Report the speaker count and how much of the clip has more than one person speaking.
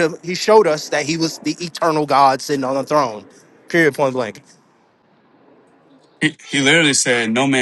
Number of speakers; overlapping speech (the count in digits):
2, no overlap